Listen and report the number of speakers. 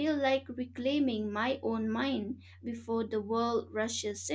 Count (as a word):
one